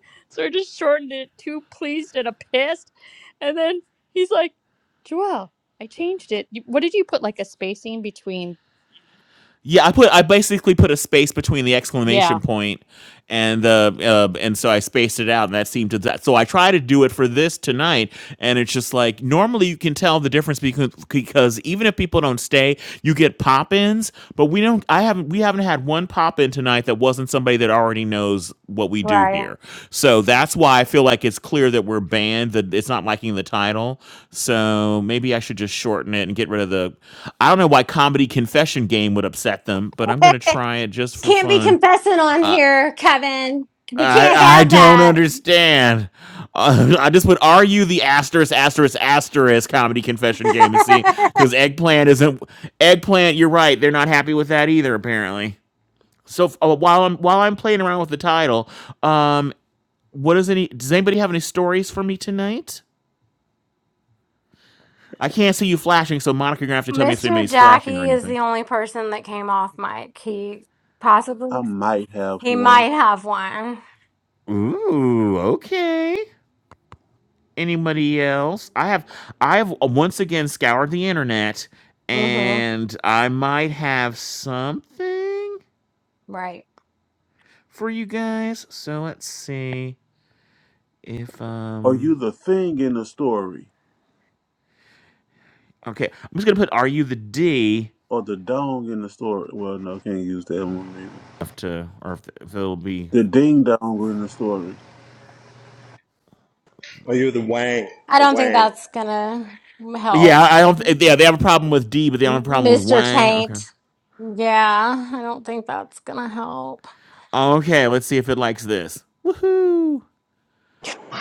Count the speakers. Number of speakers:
five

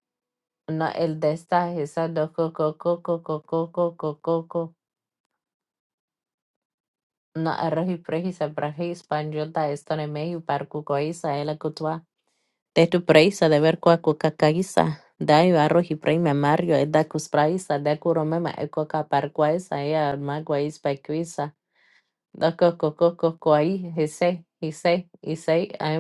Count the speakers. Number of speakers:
one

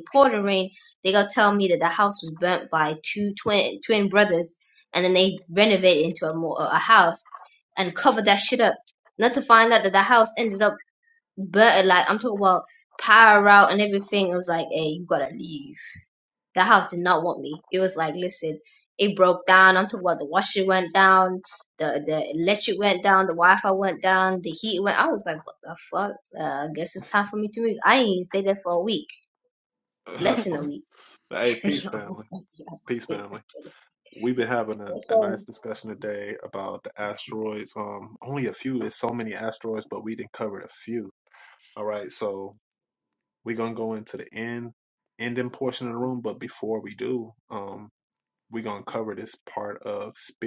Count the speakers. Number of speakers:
two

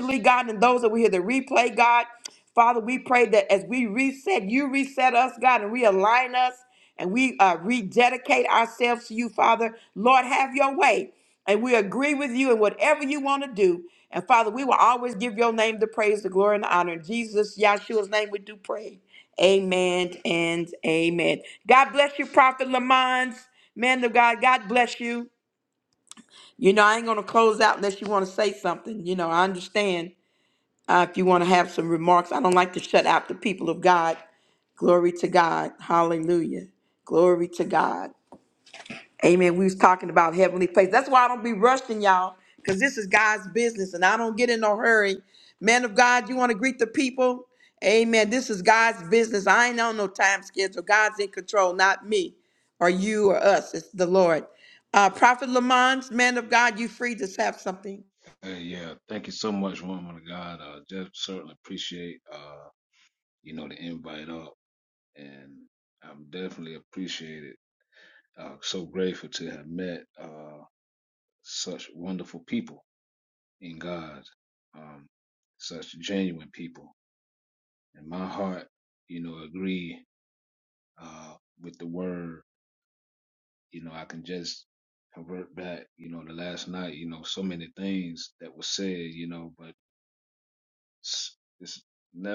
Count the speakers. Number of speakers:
two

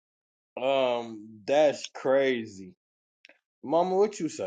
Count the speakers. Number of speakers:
one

